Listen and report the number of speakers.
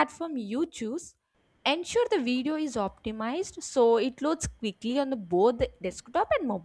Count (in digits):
1